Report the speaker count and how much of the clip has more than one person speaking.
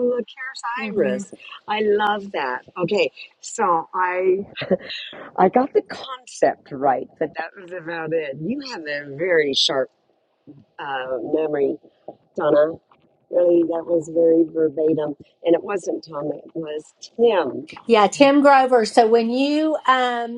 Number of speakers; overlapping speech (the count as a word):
two, about 2%